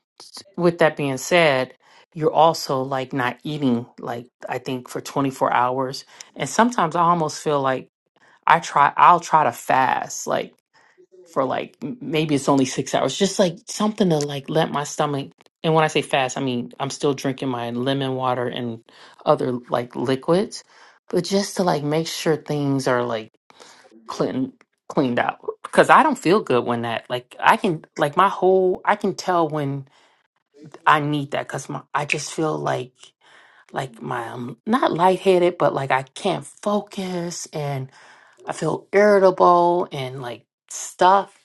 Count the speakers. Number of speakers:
1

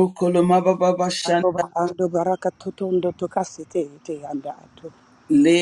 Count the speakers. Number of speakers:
2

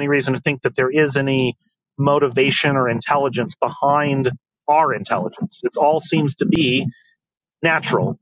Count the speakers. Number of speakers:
1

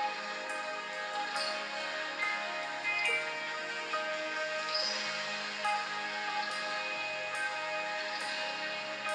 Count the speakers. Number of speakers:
0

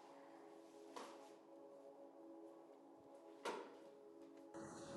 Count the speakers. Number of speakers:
0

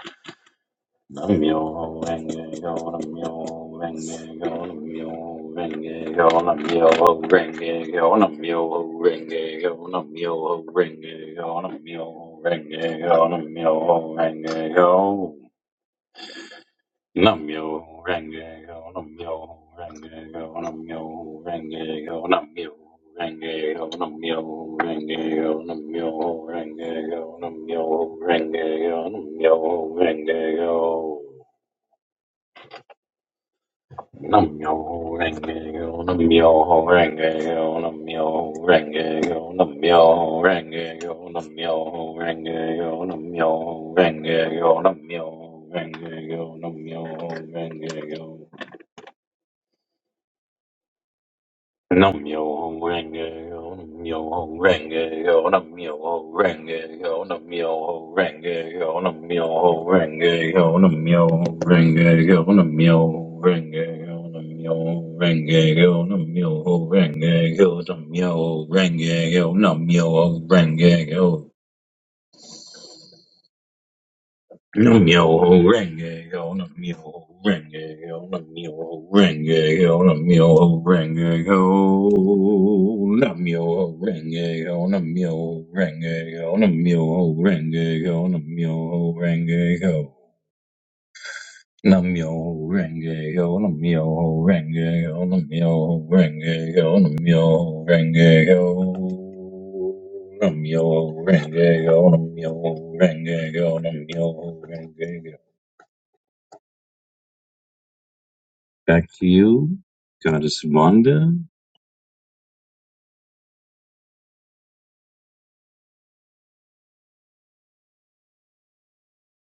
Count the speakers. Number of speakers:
1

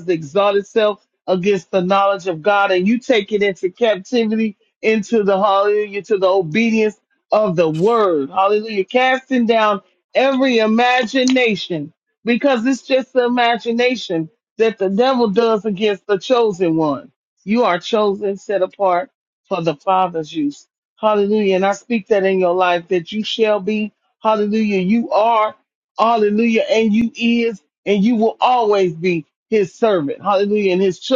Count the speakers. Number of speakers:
1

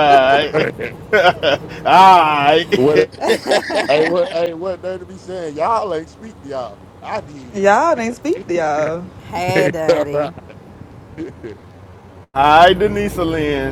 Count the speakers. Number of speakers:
4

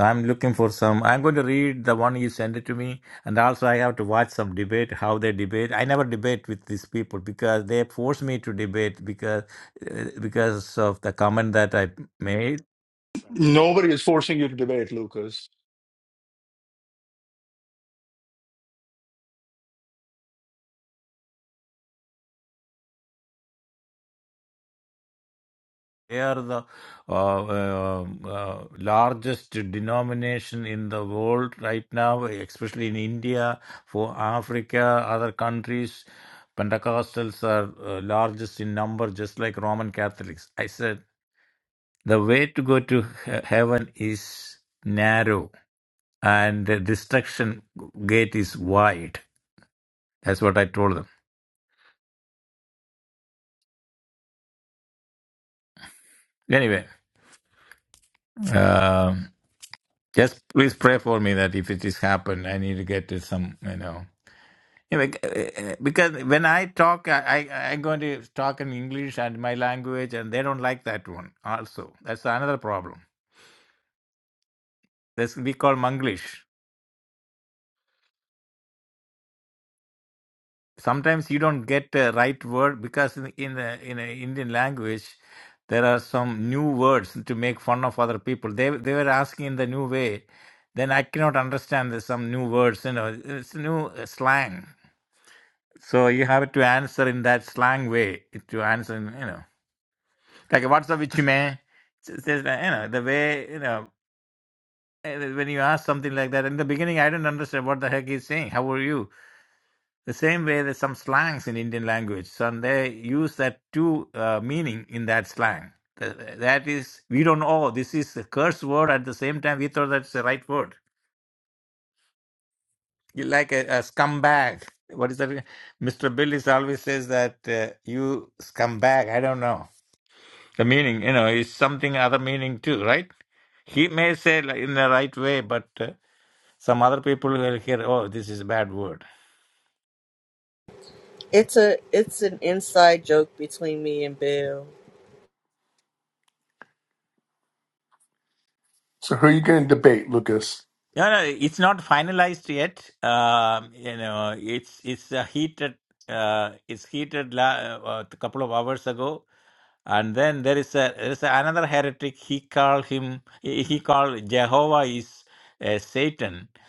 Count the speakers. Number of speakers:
4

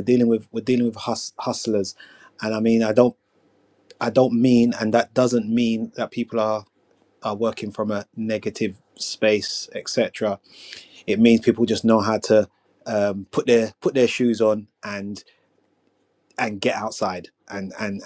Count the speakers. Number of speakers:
1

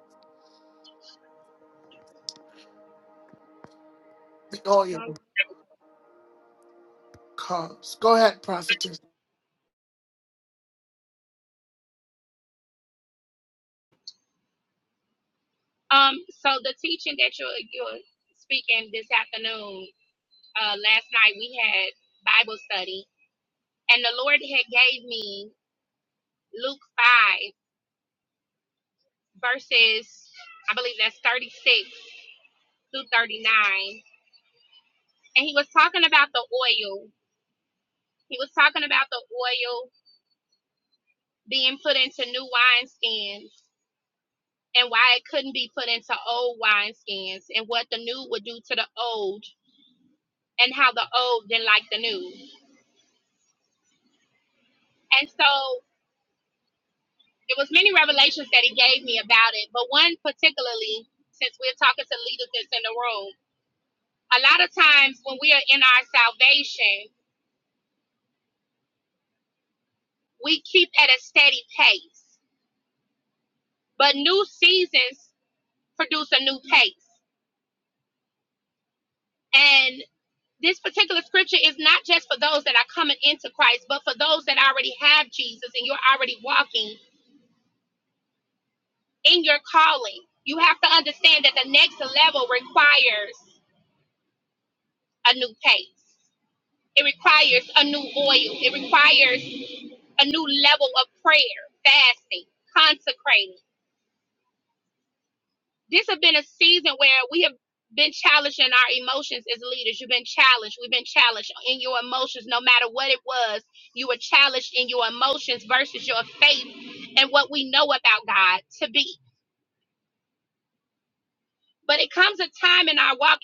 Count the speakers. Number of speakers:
2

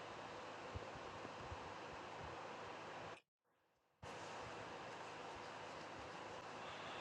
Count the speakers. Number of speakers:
0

